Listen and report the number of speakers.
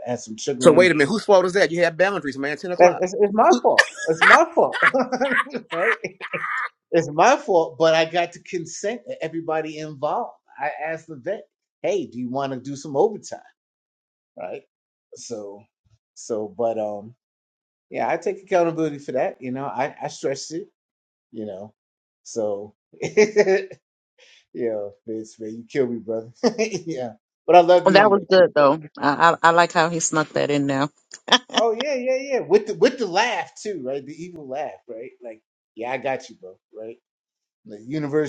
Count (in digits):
3